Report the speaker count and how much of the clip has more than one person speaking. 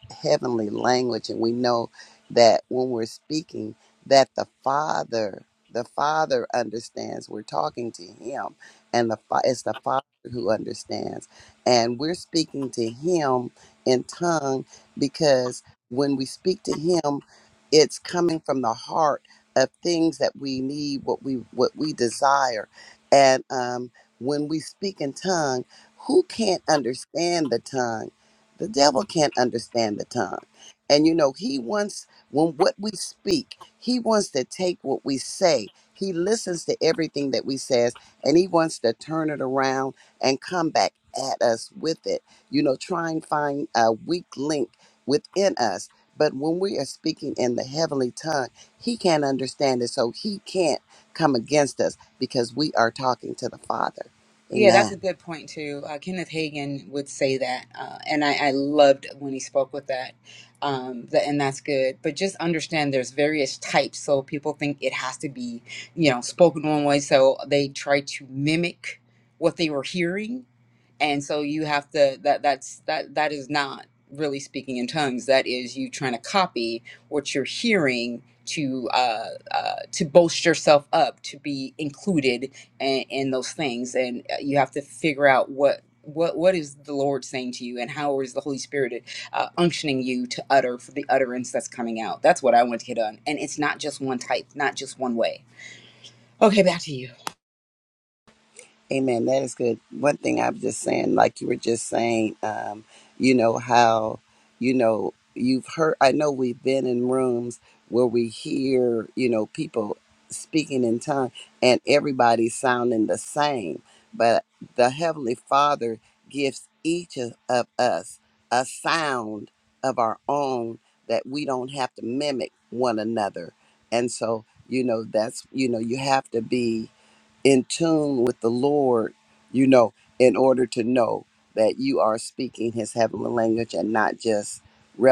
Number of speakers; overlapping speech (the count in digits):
2, under 1%